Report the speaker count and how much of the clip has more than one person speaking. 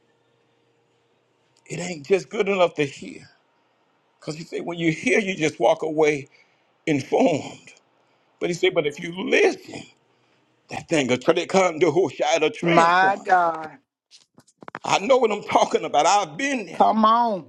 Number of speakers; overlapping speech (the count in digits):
2, about 4%